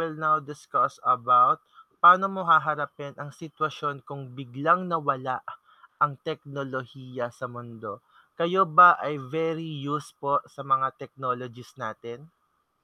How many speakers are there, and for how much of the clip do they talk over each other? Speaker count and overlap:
one, no overlap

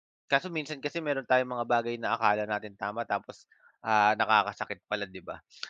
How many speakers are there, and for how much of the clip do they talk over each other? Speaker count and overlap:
one, no overlap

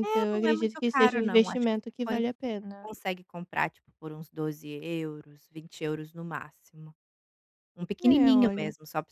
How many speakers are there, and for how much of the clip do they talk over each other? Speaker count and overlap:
two, about 28%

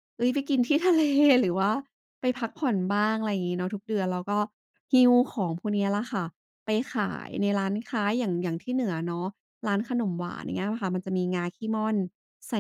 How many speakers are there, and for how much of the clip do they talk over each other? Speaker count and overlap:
one, no overlap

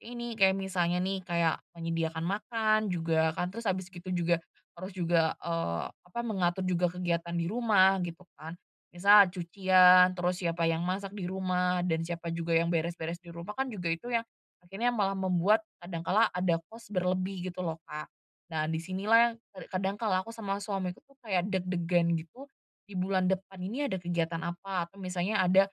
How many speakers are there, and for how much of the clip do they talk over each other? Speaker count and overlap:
one, no overlap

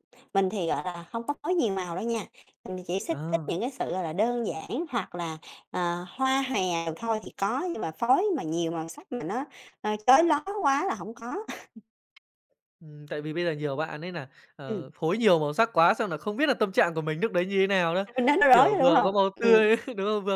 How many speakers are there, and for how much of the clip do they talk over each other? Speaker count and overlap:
two, about 8%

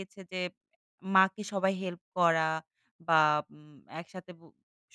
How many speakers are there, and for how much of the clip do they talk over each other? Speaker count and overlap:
one, no overlap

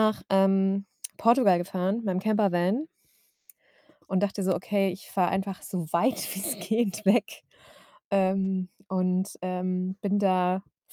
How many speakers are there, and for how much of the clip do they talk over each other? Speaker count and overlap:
one, no overlap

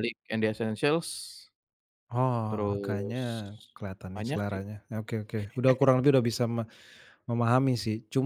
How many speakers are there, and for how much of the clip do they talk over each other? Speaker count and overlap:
two, about 14%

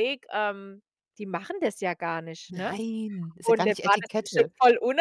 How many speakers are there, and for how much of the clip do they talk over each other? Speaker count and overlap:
two, about 26%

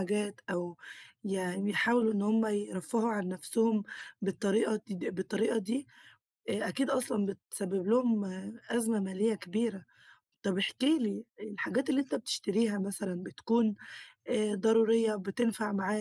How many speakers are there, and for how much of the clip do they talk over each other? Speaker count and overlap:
one, no overlap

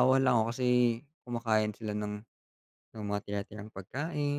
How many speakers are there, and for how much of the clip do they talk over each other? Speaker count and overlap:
one, no overlap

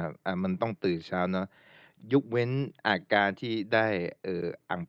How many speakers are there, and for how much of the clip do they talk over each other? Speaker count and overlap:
one, no overlap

